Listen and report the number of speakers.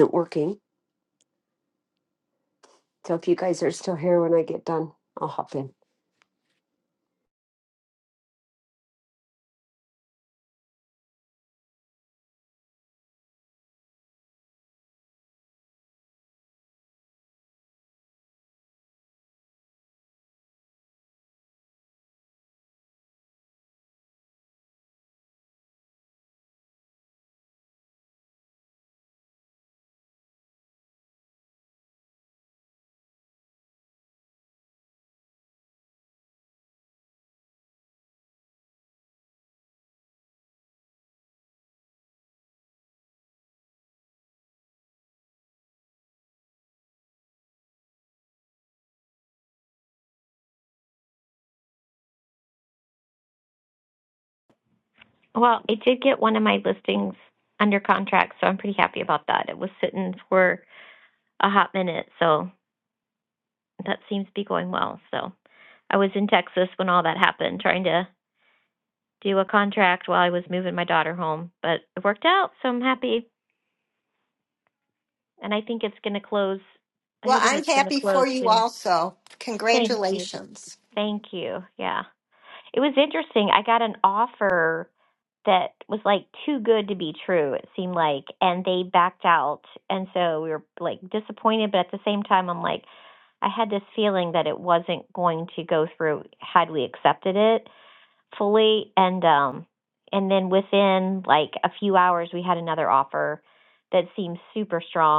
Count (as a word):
three